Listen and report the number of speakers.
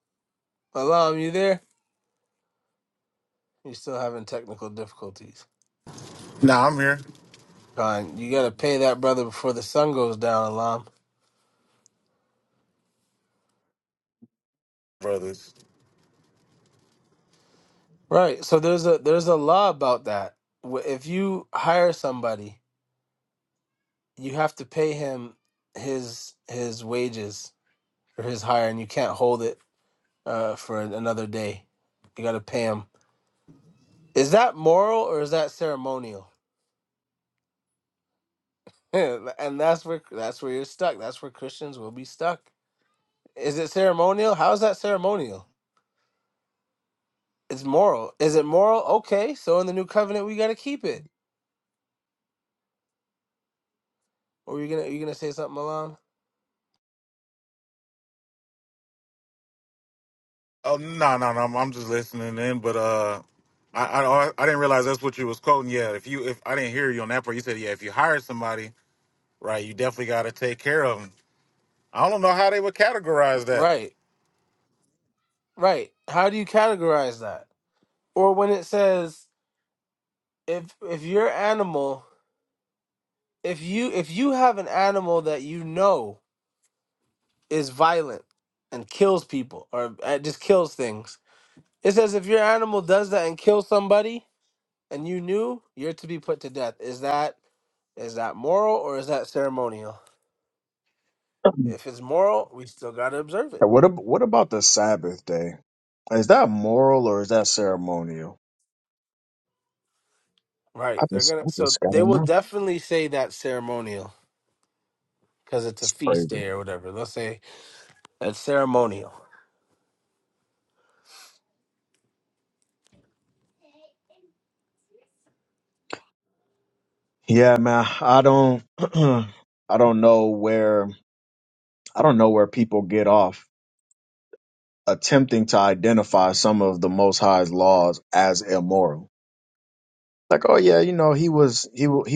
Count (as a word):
three